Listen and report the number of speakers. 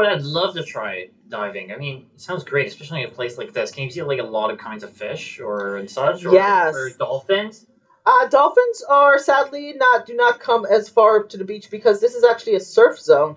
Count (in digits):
2